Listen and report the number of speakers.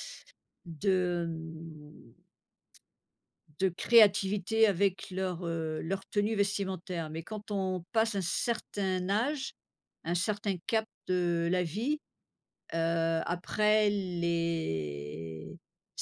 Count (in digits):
1